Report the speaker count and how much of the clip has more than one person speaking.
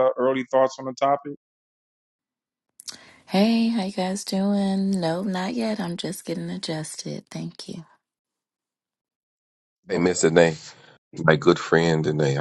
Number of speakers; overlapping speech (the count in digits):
3, about 2%